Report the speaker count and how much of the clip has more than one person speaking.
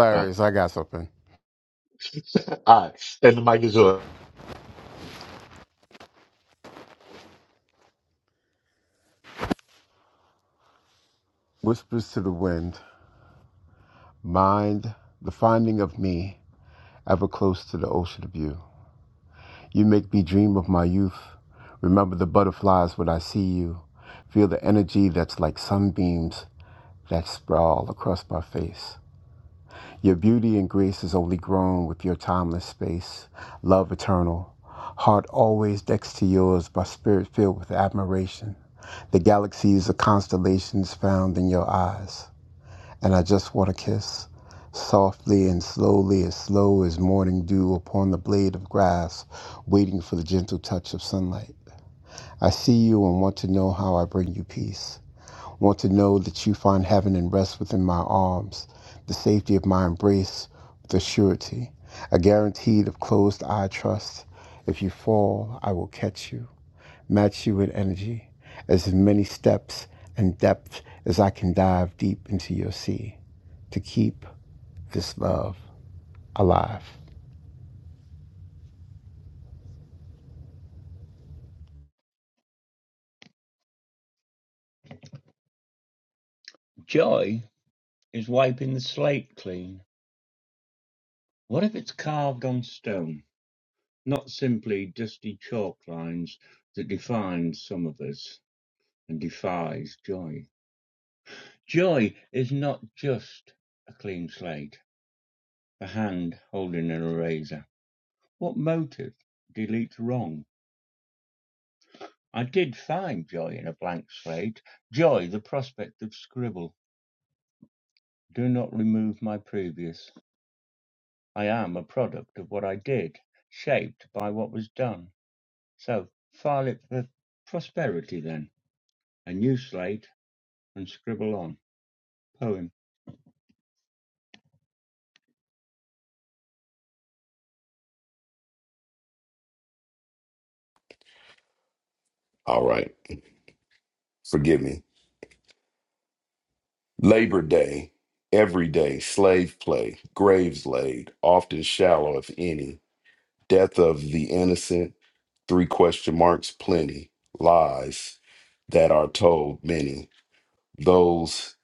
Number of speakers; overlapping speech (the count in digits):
4, under 1%